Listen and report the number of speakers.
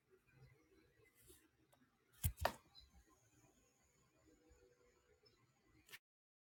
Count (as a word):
zero